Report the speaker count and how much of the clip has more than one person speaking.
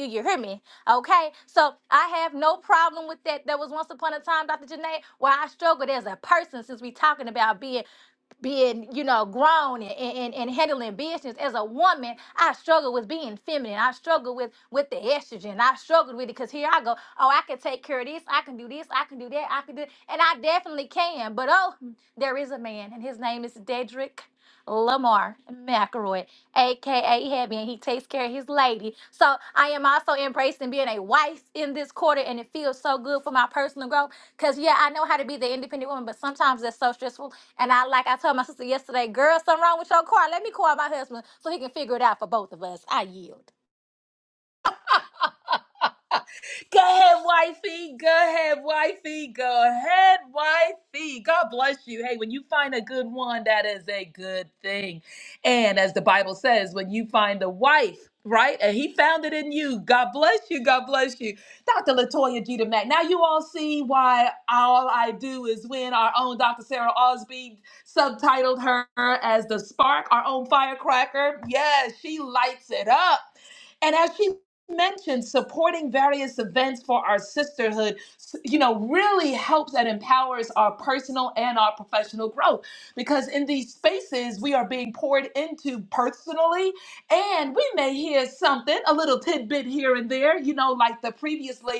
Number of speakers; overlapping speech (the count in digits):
2, no overlap